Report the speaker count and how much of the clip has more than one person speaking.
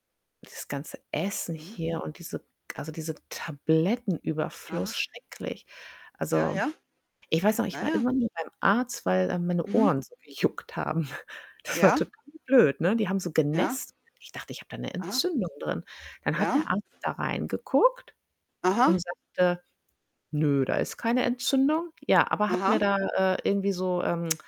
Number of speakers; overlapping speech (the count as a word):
two, about 11%